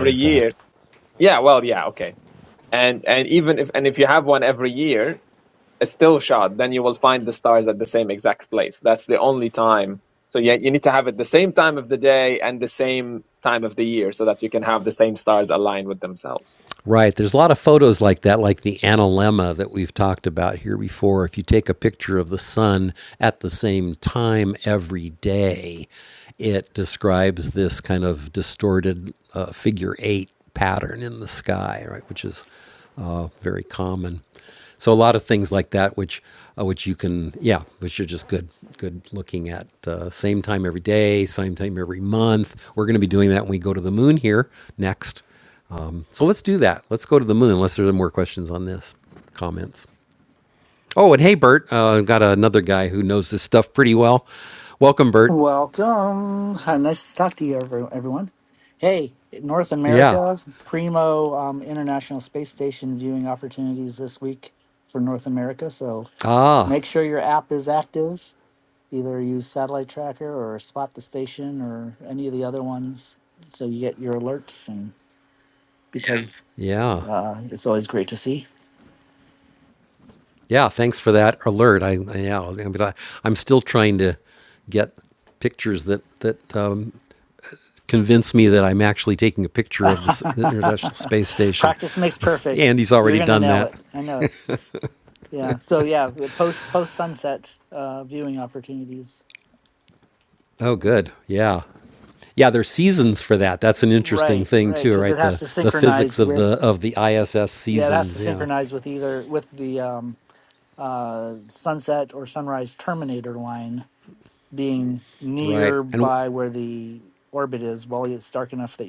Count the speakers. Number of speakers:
three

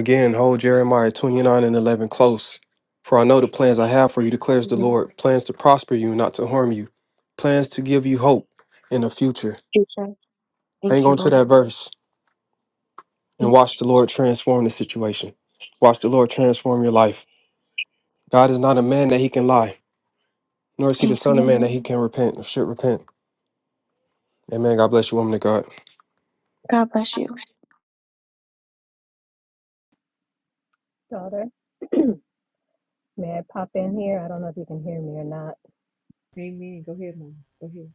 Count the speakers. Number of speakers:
four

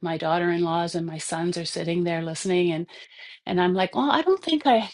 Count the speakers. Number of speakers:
one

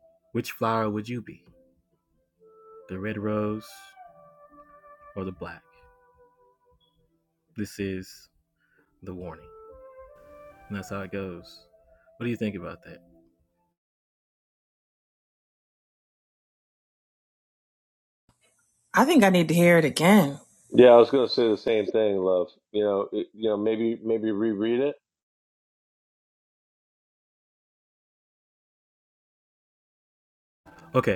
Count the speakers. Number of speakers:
three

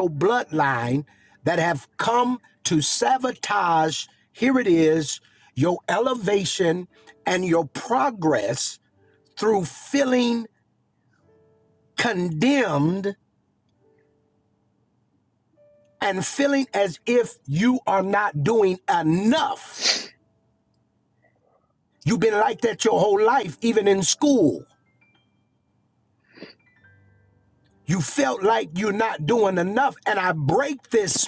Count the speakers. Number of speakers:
one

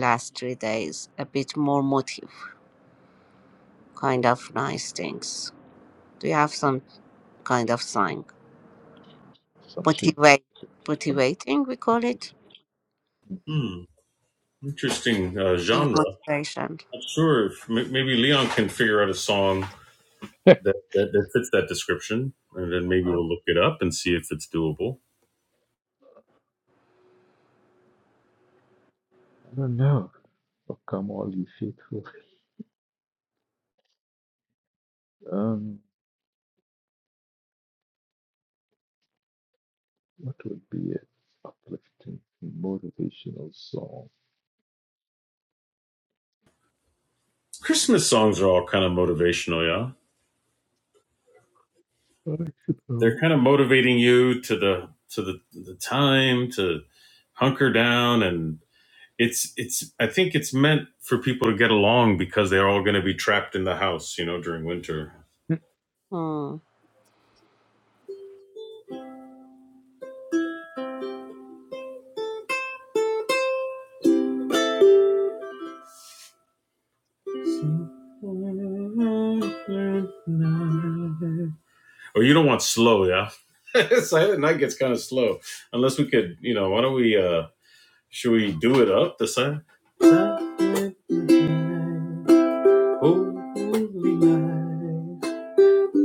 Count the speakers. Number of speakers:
three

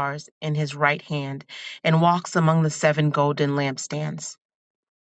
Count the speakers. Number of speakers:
one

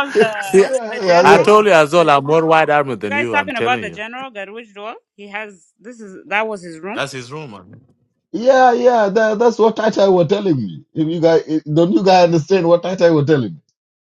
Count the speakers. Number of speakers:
three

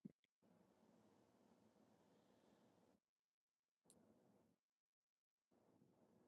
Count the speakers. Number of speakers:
zero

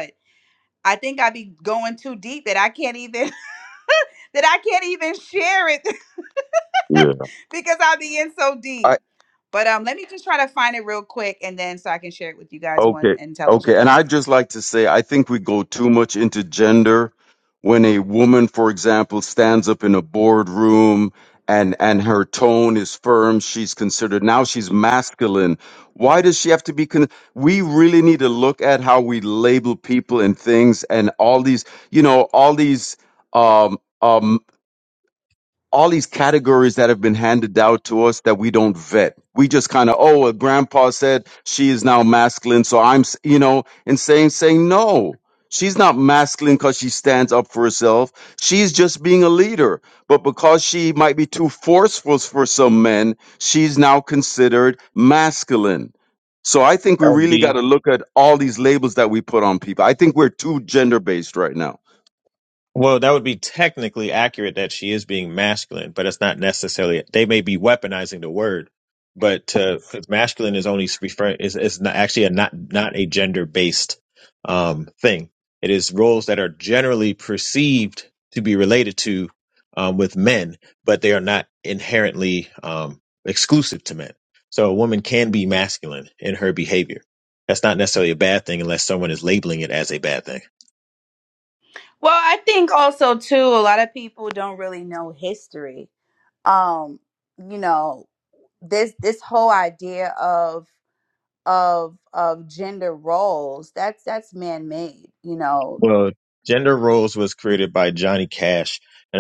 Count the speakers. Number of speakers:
three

